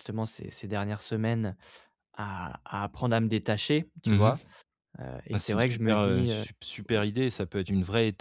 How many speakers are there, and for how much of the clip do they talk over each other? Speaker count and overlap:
two, about 18%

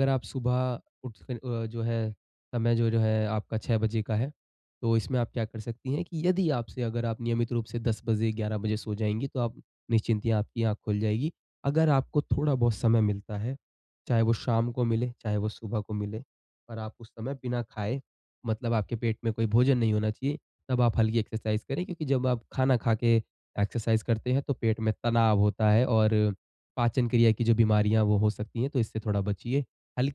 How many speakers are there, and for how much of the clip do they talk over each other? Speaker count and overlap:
one, no overlap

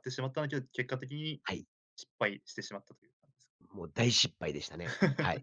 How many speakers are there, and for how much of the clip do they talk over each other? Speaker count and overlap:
two, no overlap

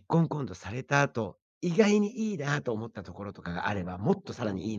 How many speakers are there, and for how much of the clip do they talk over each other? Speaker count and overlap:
one, no overlap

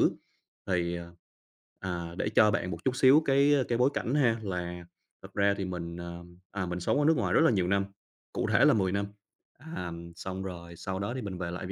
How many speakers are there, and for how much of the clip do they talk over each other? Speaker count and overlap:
one, no overlap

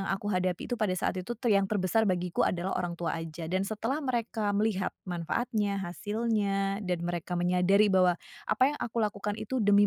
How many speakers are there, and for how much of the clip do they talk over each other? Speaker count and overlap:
one, no overlap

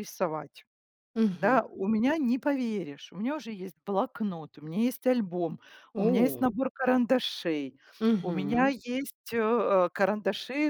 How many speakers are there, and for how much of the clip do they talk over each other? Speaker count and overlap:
two, about 11%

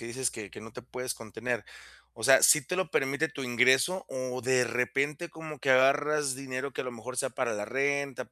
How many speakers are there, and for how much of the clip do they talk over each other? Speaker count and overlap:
one, no overlap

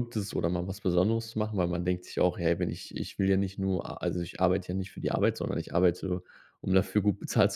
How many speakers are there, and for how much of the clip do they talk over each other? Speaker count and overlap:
one, no overlap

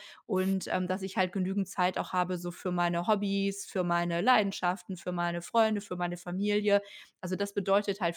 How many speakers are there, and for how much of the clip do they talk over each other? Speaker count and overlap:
one, no overlap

